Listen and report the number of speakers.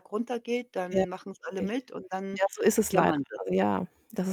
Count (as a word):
two